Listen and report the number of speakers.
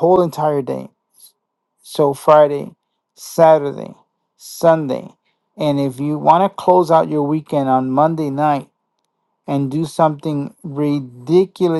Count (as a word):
one